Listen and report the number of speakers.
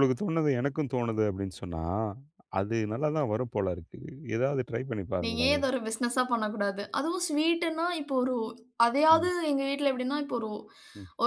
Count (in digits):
2